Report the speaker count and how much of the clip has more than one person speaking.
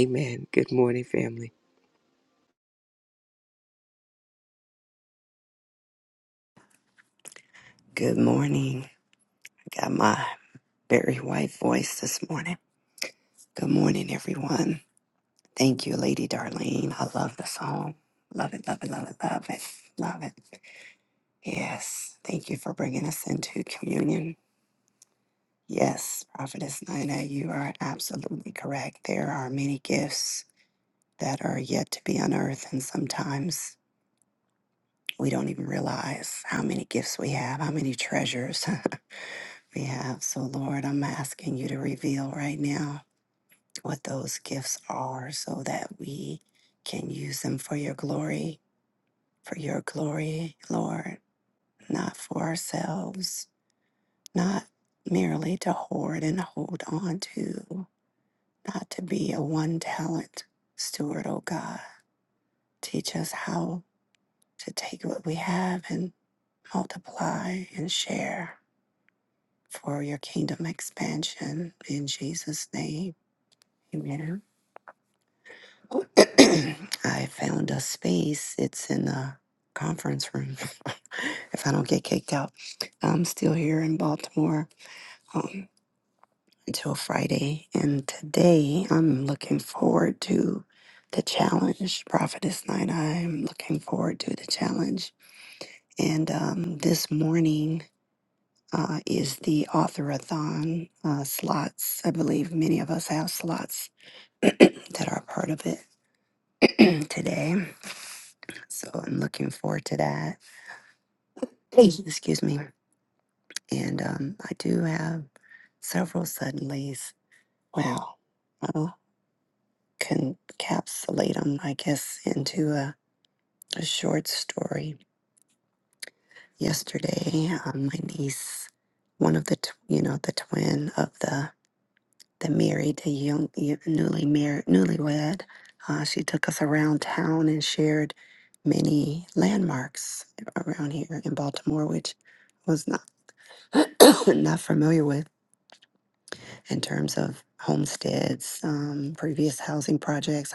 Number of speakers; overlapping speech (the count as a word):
two, no overlap